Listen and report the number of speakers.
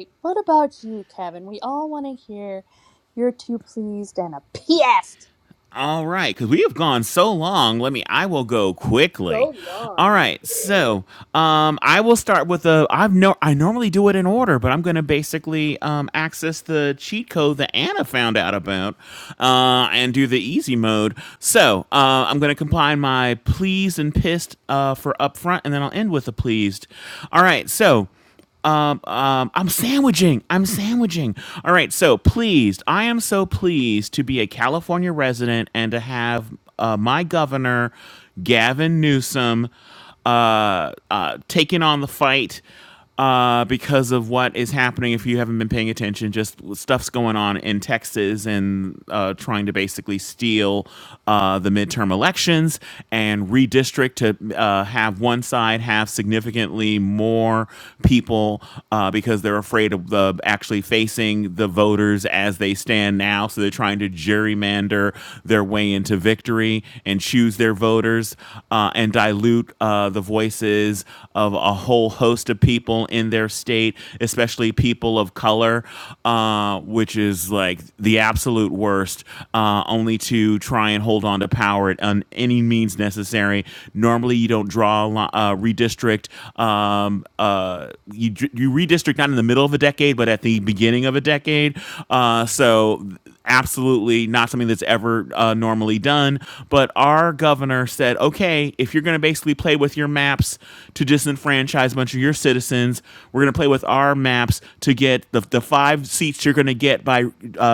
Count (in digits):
2